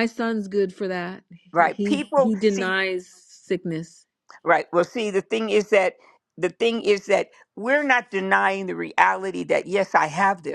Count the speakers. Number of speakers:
2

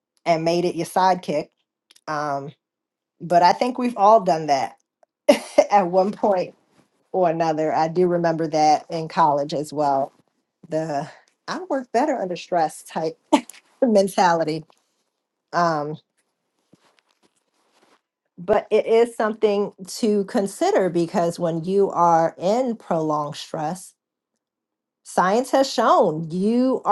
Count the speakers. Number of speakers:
1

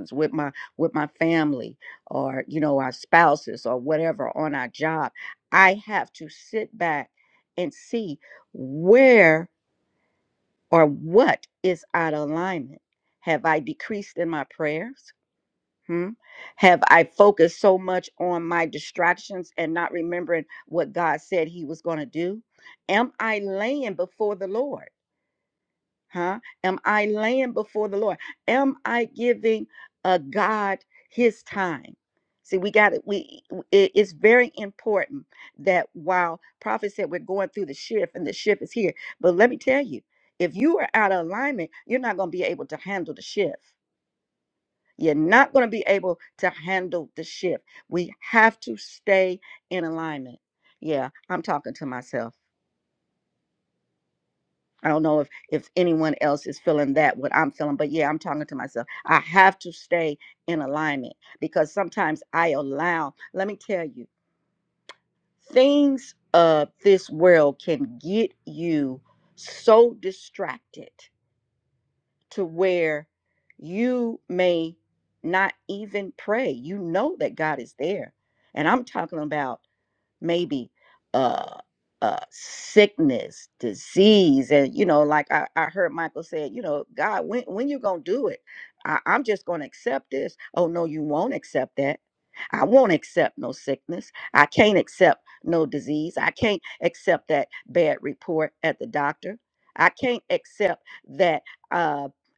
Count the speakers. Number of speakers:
1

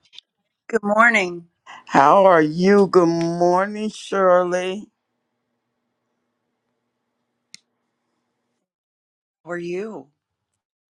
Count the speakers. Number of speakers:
2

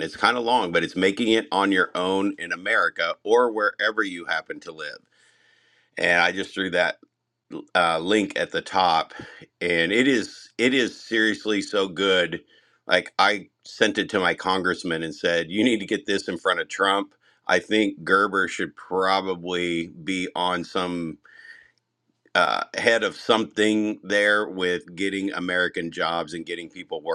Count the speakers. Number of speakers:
1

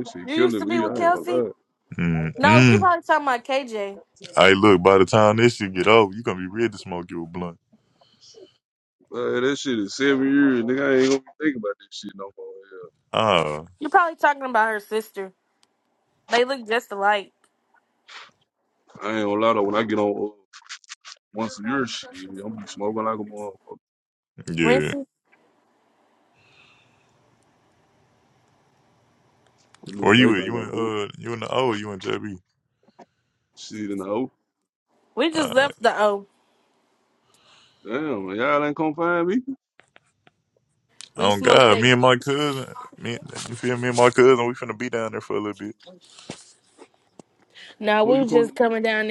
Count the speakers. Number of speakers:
3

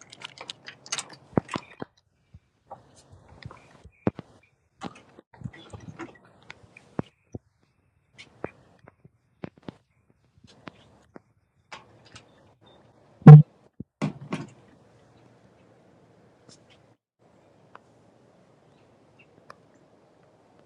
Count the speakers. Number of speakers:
0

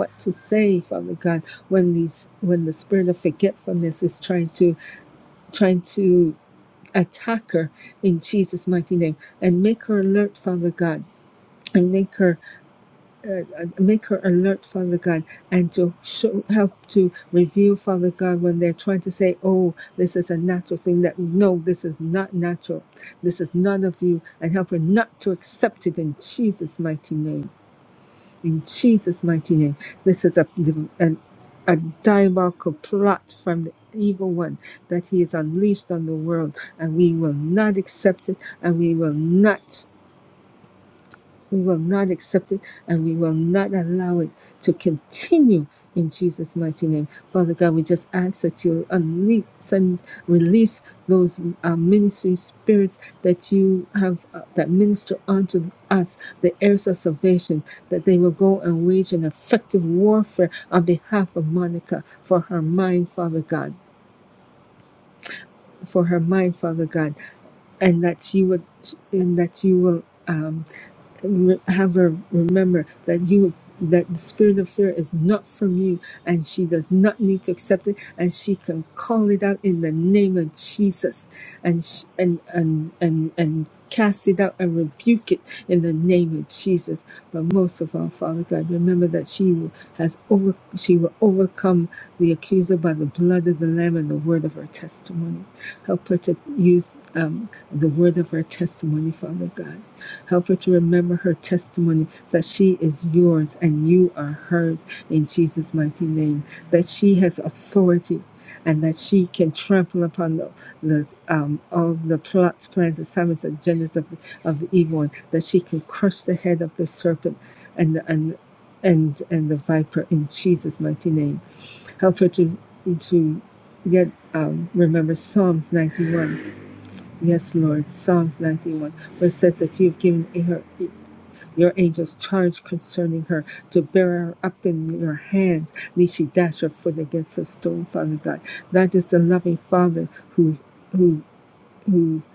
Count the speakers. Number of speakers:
1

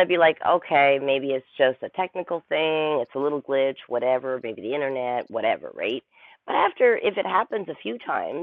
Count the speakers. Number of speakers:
1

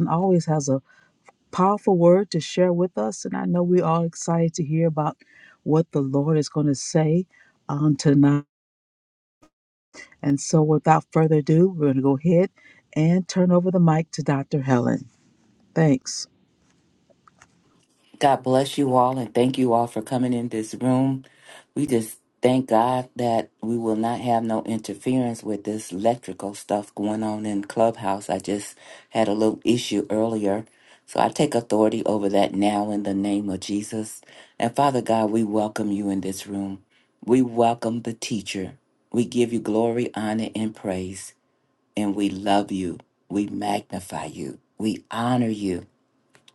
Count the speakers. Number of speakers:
2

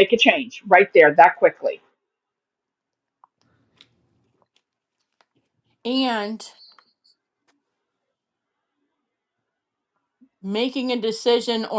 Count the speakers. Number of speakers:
2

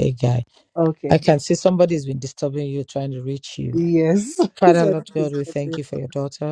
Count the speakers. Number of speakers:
2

